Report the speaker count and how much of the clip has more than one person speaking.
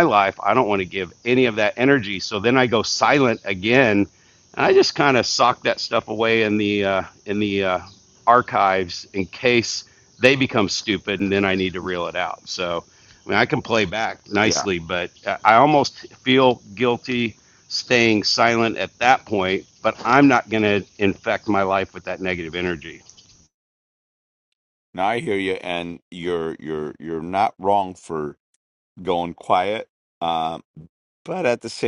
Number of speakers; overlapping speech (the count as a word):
two, about 1%